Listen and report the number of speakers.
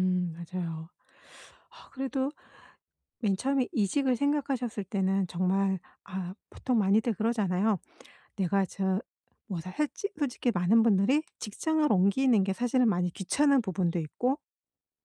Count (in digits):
1